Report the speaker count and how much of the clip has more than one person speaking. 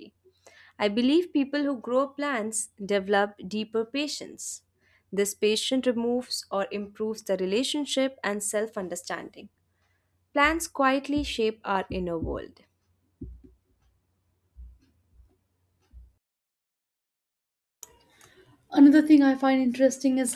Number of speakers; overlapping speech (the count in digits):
2, no overlap